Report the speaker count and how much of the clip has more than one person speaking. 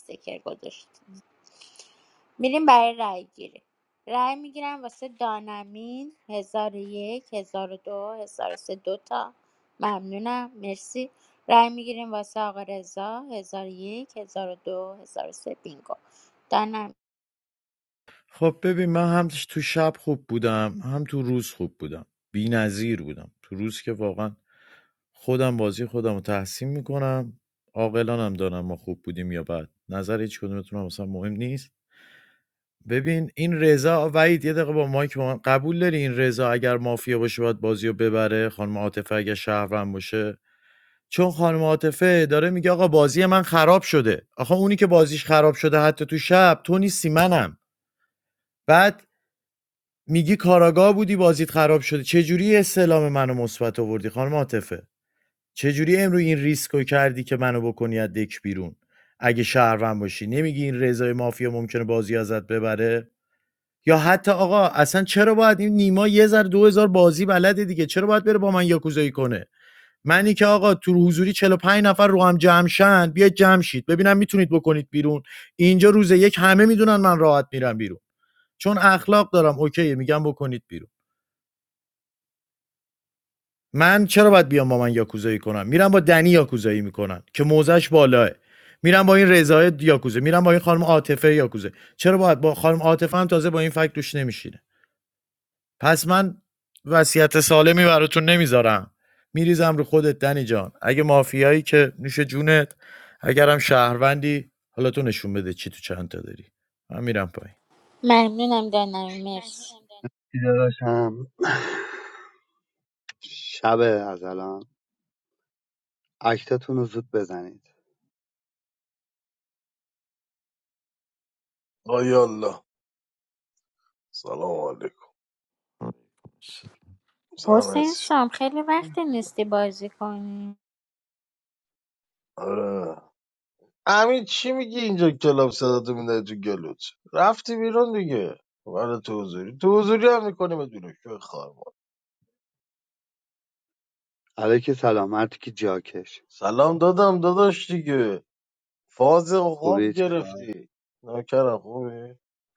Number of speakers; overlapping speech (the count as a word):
four, about 1%